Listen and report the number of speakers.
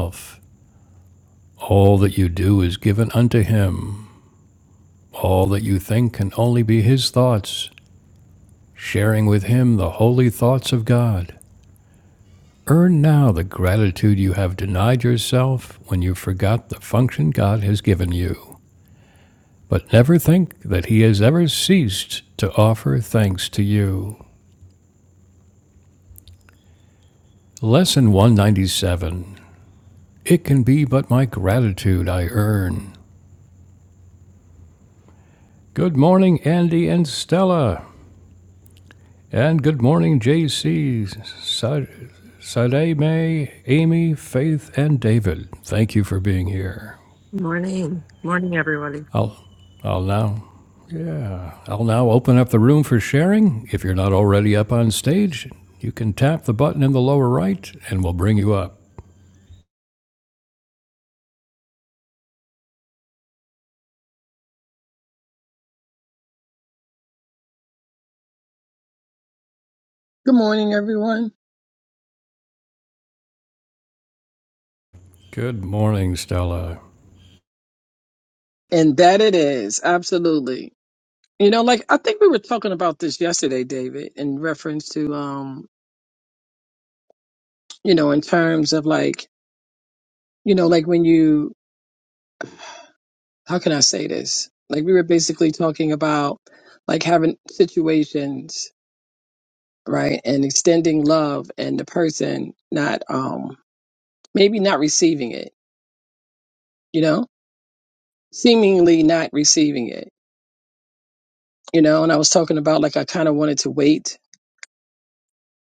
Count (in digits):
3